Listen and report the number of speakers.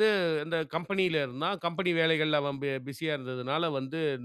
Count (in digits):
1